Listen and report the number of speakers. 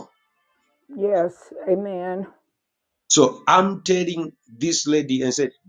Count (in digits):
2